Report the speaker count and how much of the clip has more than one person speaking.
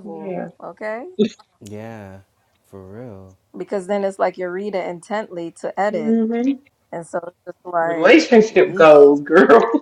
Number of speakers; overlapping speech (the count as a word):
three, about 16%